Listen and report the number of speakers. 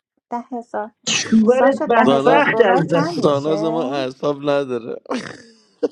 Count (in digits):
3